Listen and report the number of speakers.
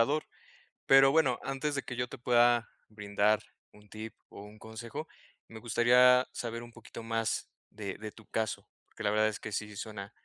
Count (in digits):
1